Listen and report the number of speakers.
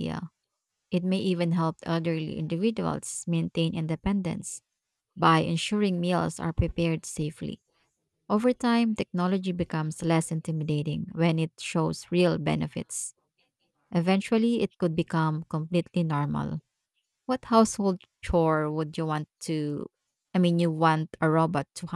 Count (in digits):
1